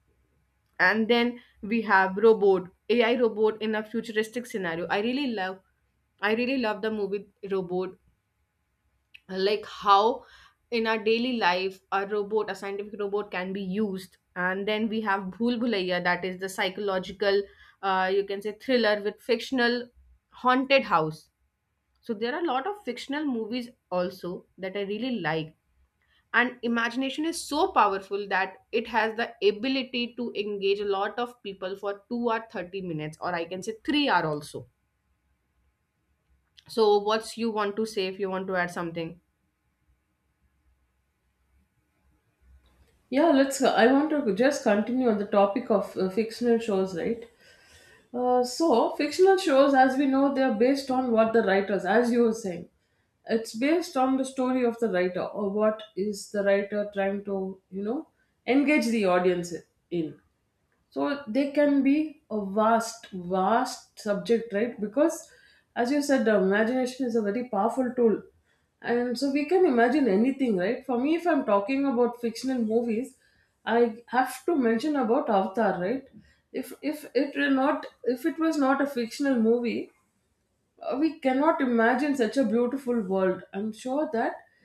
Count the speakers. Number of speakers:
2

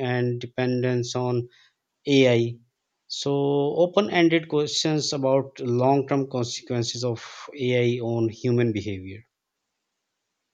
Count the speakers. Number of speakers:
1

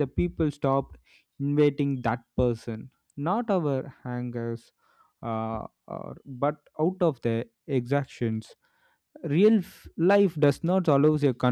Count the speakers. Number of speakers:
1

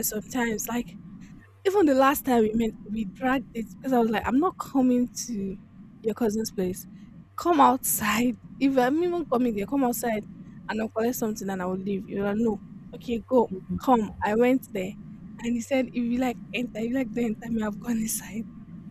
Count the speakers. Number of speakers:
1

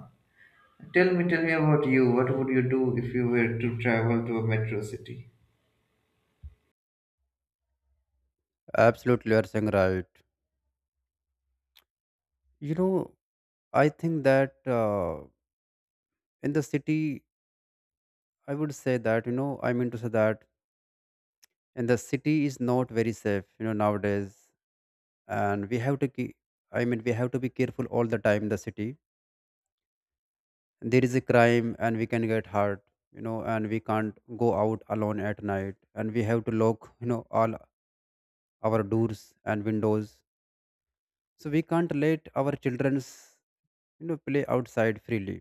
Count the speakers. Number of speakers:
2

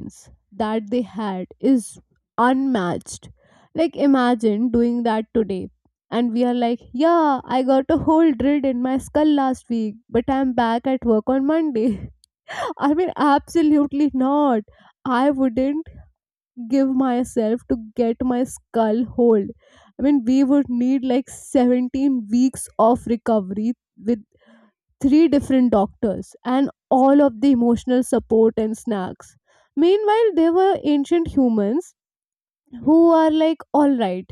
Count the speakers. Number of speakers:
1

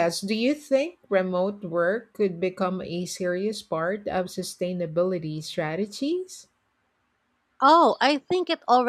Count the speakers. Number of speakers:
2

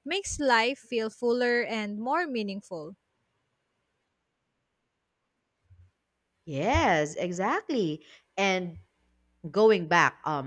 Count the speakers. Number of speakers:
2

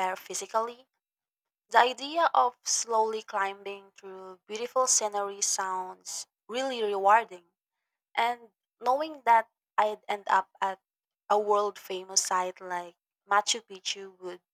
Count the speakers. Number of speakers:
1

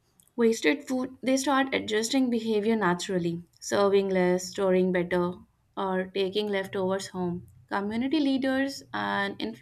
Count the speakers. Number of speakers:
1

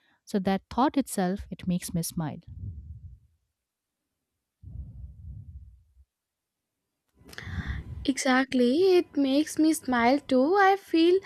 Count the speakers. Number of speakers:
2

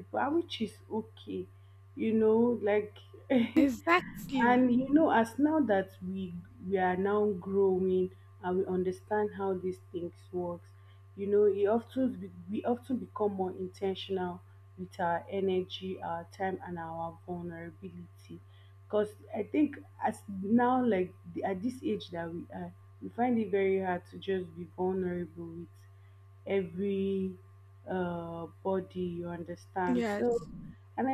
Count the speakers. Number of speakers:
2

